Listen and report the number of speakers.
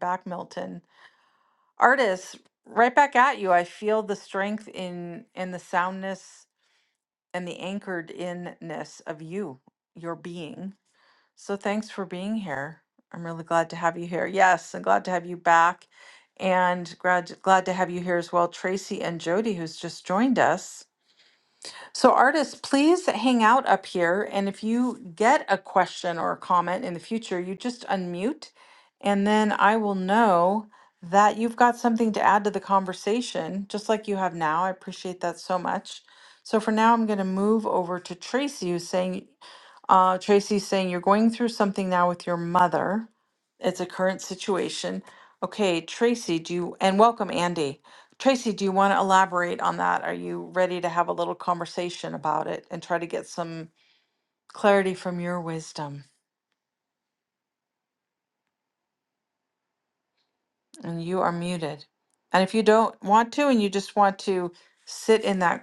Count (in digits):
1